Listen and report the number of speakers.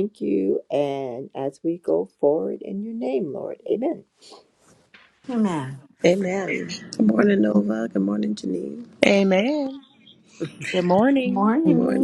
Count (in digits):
4